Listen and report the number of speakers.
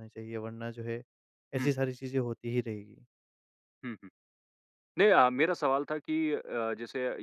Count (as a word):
two